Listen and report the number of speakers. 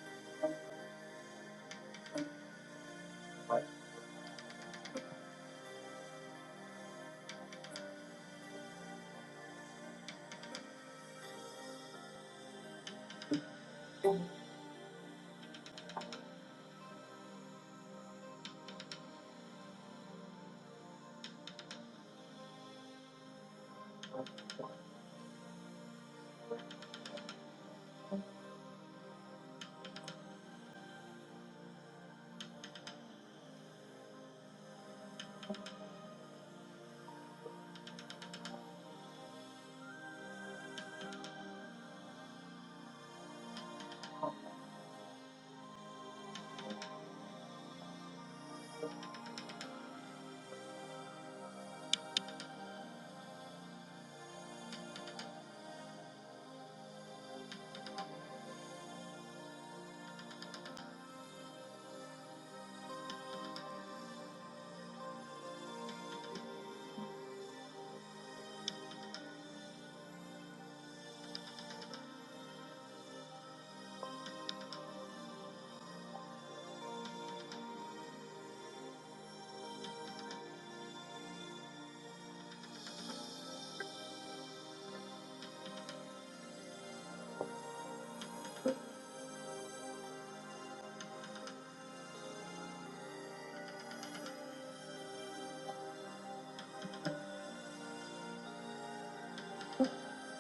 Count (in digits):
0